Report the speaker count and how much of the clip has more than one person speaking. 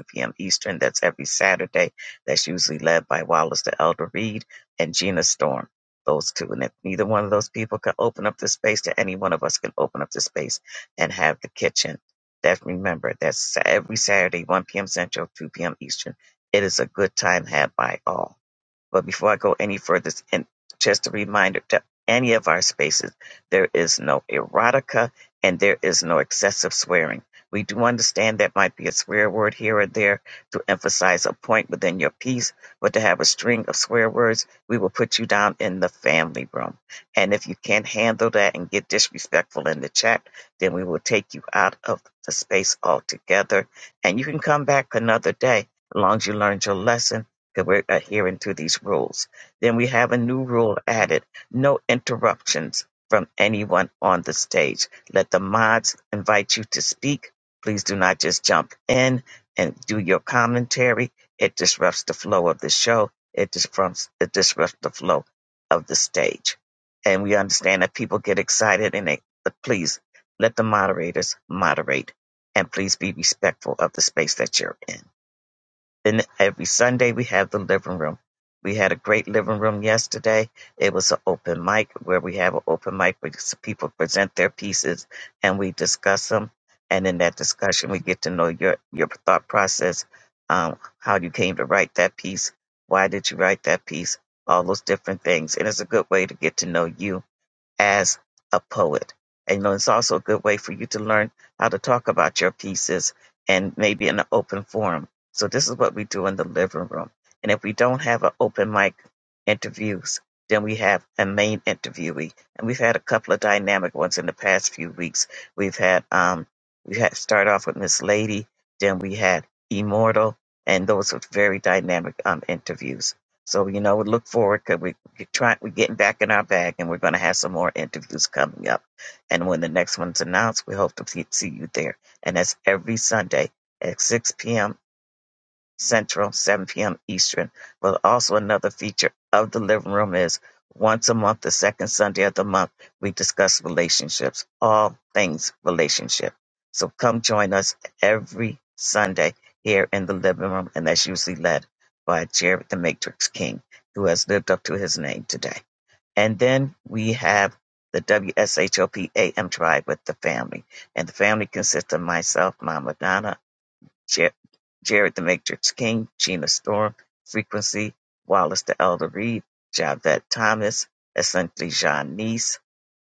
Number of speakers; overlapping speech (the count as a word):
one, no overlap